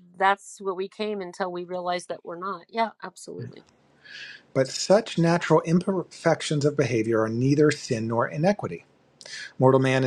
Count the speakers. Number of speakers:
two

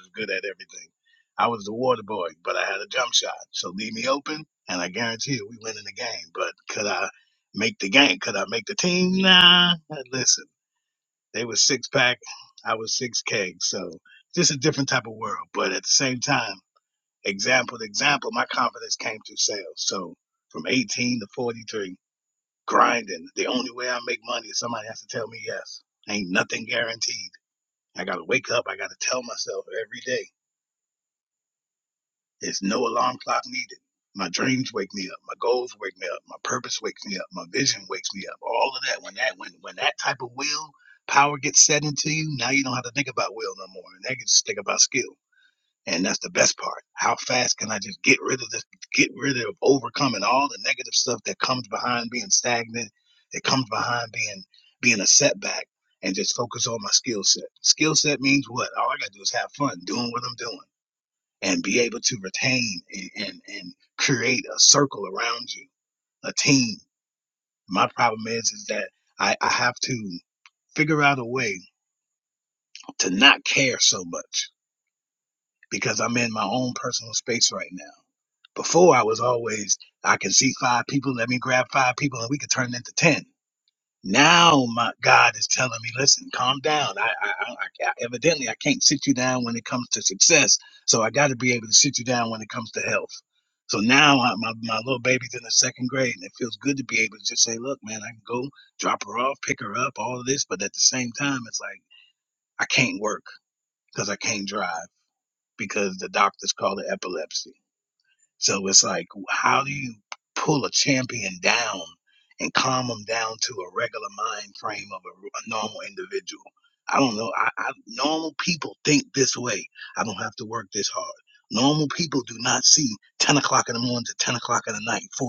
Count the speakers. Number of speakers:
one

